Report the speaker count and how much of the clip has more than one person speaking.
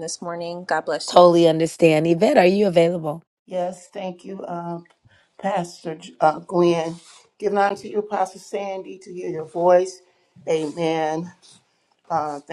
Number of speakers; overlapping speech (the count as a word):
three, about 1%